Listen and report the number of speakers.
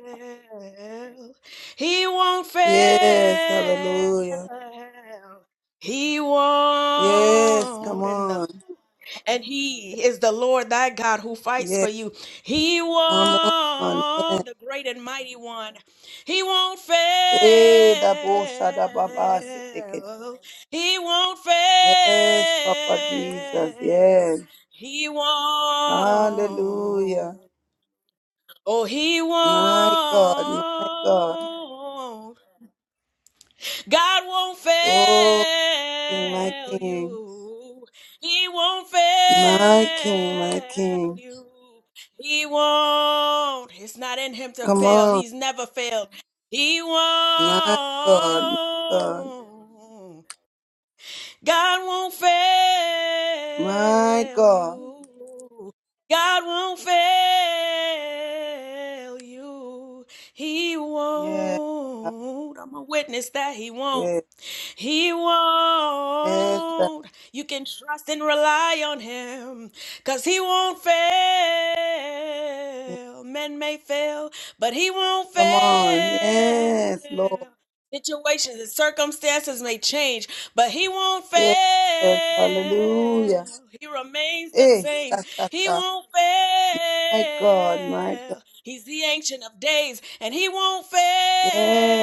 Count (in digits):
2